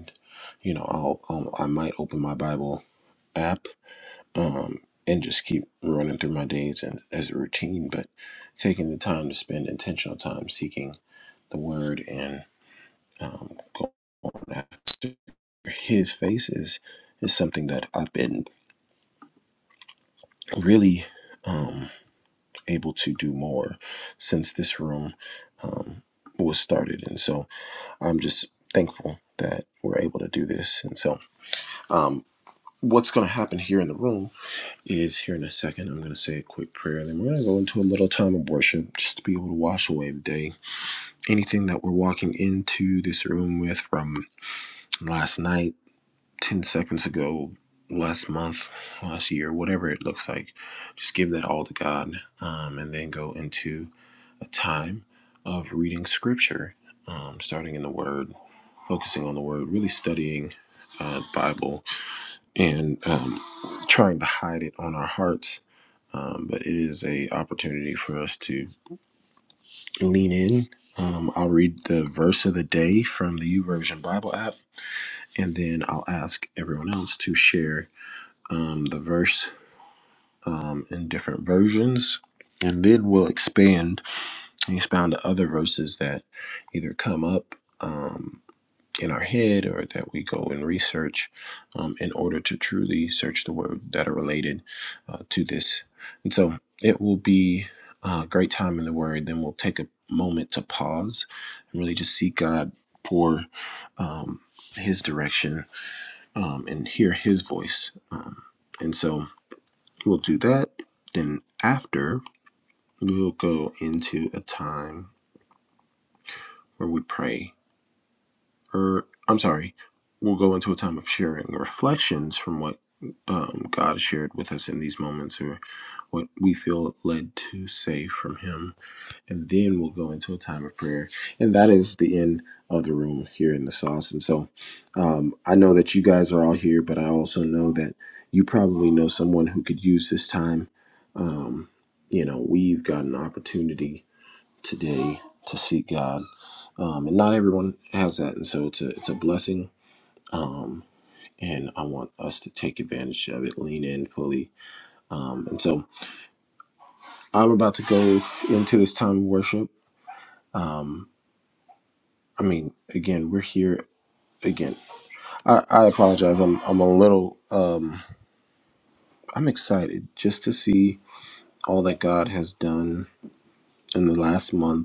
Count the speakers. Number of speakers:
one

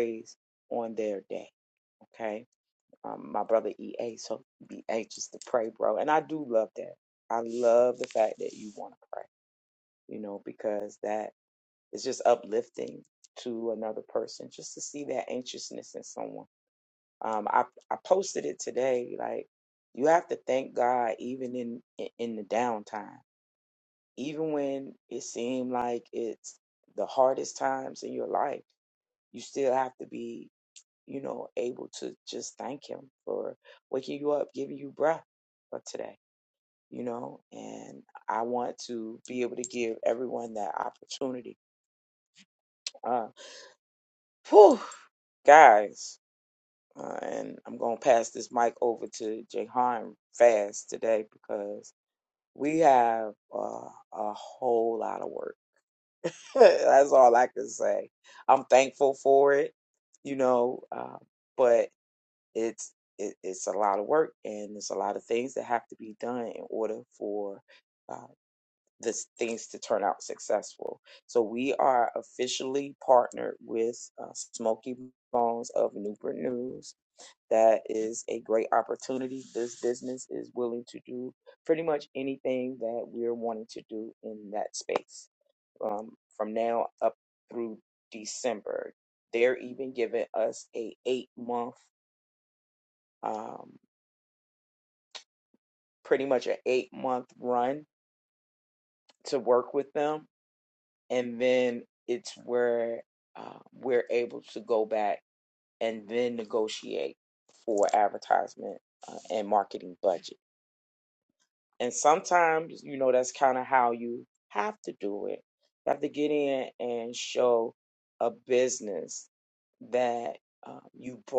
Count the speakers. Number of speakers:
one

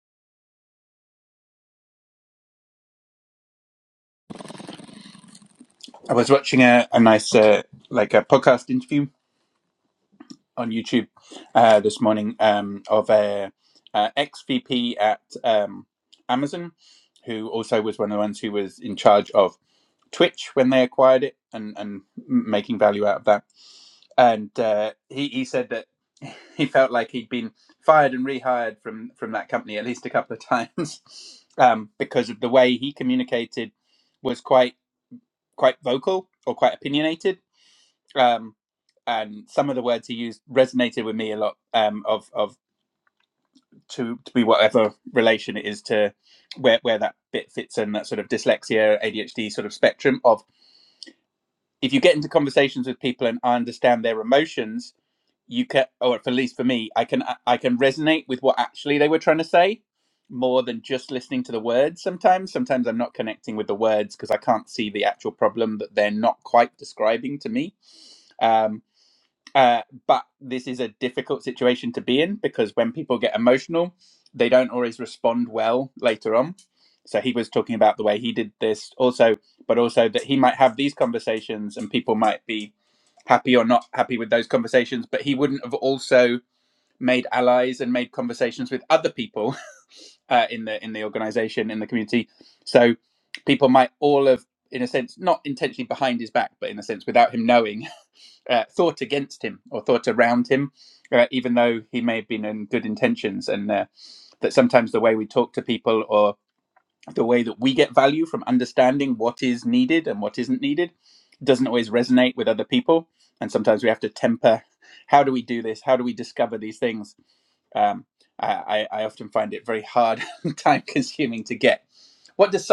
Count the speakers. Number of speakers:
one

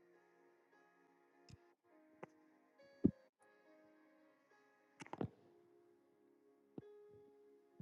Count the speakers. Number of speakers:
zero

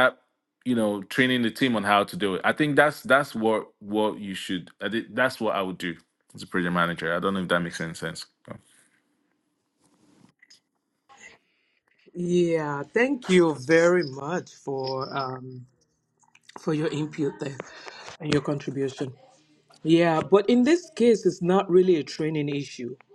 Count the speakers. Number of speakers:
two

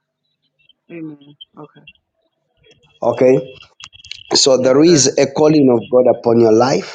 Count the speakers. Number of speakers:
two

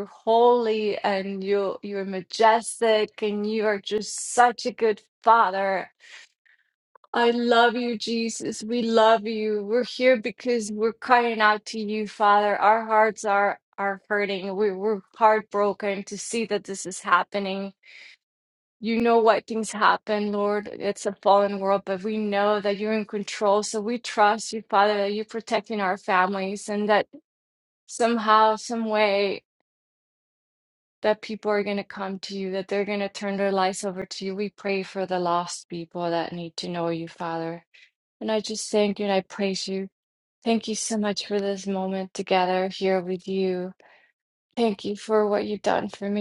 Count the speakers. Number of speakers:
one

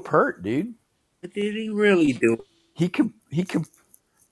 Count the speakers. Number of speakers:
two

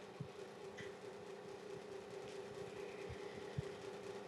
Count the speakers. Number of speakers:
zero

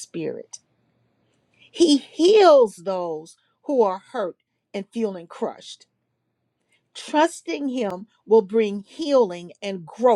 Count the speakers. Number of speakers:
one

